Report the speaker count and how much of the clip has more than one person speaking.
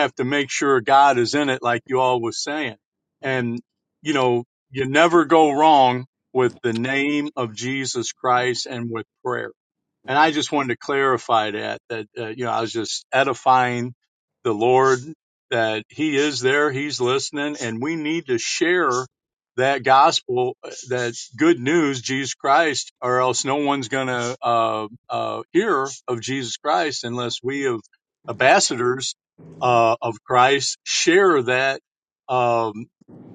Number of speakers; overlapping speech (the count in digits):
1, no overlap